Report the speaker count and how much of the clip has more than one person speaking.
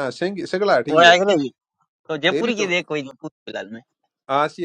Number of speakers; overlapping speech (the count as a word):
two, about 15%